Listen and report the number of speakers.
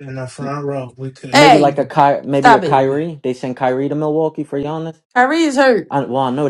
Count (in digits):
3